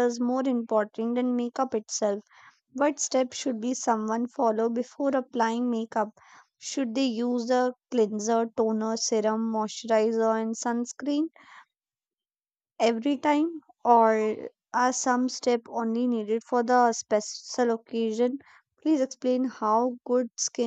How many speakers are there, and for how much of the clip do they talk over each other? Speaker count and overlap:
1, no overlap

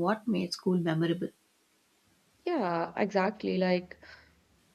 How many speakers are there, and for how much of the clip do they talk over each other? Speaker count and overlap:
2, no overlap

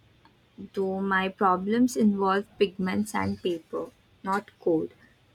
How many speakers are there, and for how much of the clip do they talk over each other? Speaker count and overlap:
1, no overlap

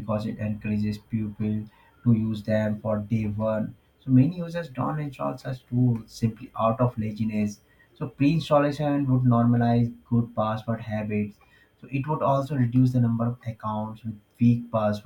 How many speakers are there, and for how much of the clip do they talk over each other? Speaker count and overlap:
1, no overlap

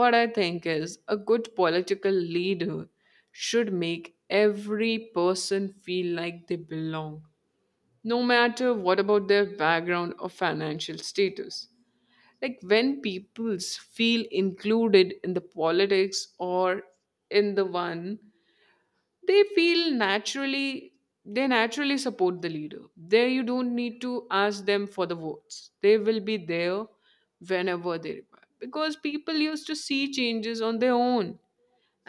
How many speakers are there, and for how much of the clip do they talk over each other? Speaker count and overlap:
1, no overlap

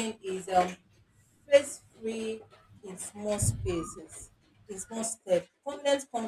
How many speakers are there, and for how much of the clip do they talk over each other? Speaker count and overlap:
1, no overlap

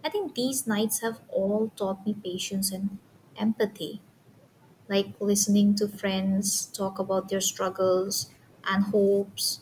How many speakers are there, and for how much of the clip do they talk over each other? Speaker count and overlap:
1, no overlap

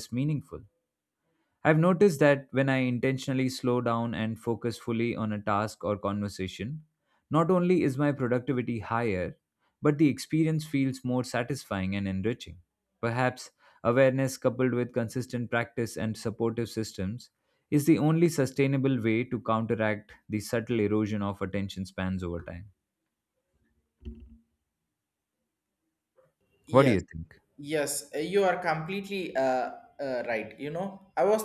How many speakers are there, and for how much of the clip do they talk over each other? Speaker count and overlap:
2, about 1%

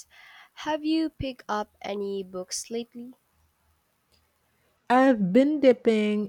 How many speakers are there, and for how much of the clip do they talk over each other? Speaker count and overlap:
2, no overlap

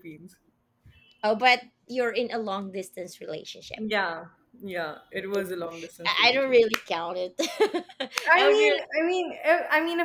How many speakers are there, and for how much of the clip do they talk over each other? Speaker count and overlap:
2, about 10%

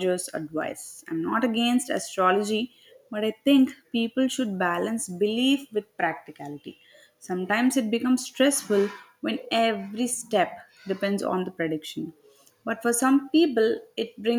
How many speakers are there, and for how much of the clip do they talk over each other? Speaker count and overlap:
1, no overlap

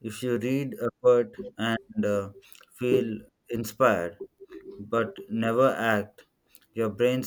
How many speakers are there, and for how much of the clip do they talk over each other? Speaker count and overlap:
1, no overlap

